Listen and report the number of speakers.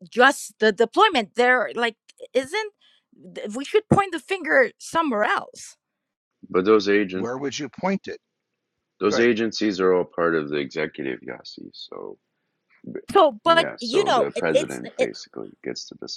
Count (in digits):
3